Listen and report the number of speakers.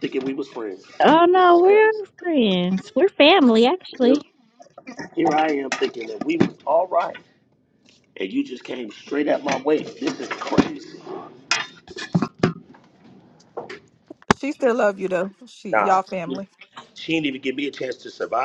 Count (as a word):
three